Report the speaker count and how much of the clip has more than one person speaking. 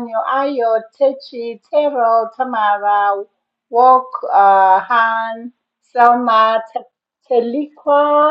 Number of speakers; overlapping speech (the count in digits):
1, no overlap